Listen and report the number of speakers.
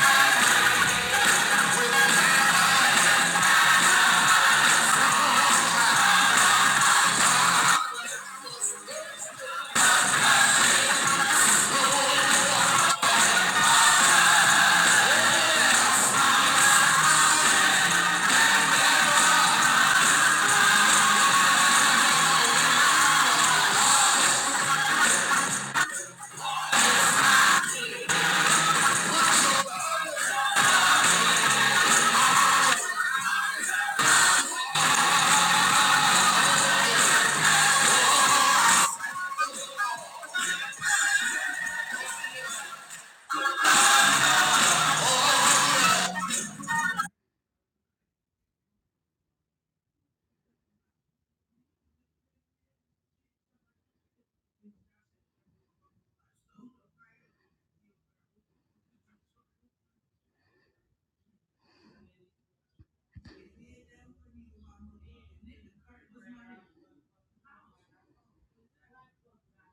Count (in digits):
0